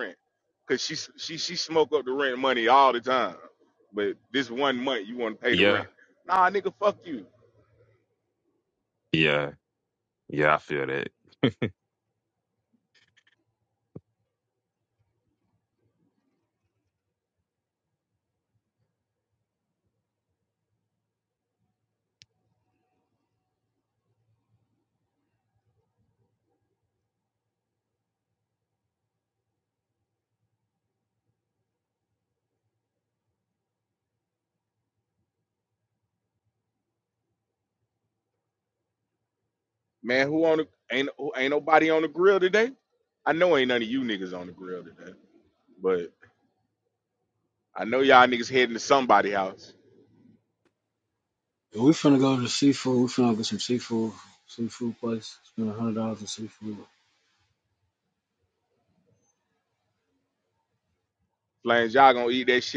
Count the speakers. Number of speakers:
3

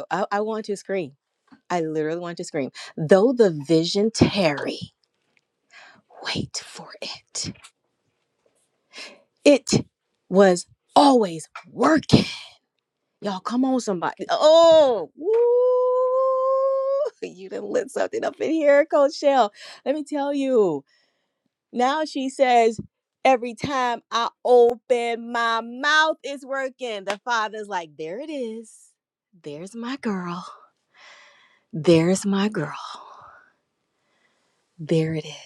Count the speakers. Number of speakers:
1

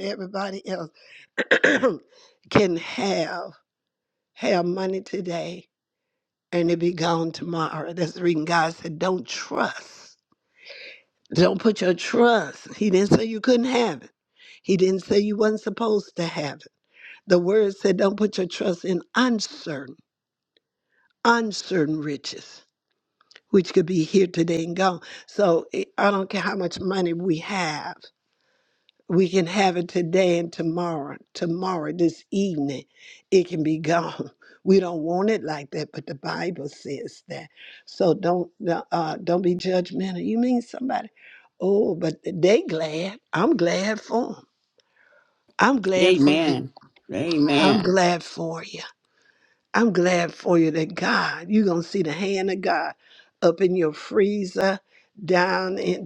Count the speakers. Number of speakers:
2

